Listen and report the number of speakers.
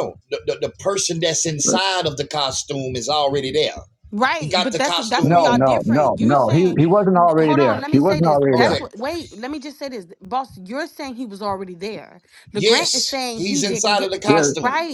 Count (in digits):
3